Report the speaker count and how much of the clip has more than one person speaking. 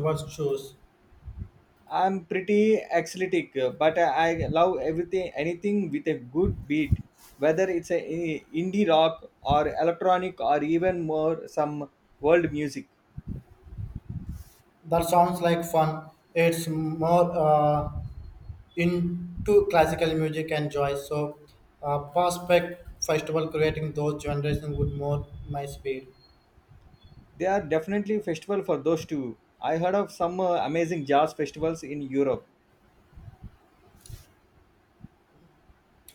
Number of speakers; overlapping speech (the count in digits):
2, no overlap